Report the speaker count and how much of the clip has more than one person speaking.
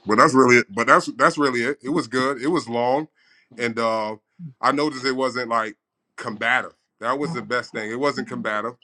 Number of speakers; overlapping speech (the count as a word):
one, no overlap